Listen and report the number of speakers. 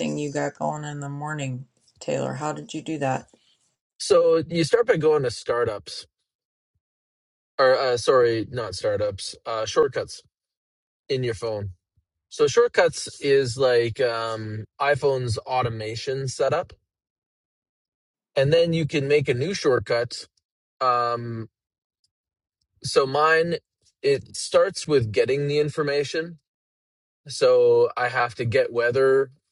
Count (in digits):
2